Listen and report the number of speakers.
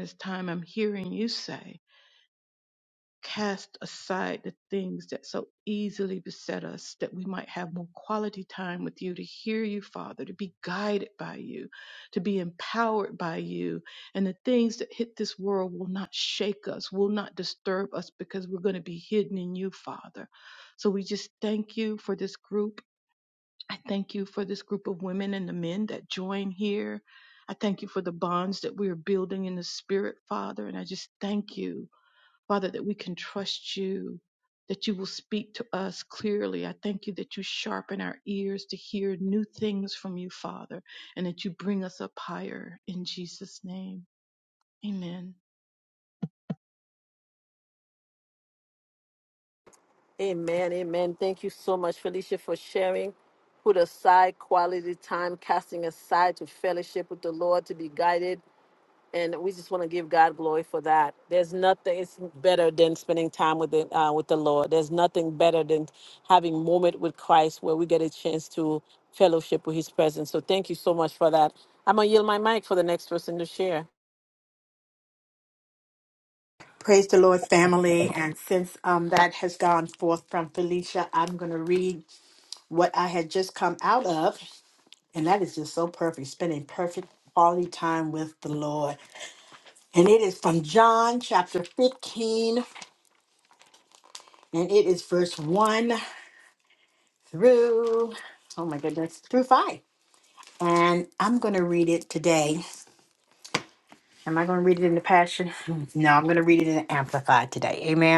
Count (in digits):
3